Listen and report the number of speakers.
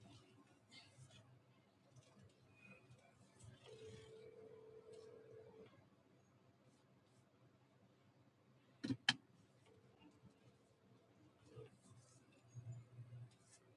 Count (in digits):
0